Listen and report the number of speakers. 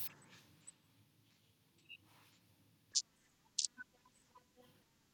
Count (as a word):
zero